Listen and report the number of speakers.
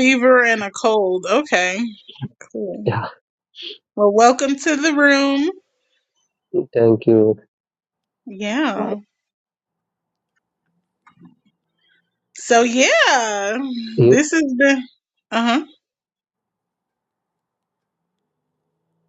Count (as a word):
two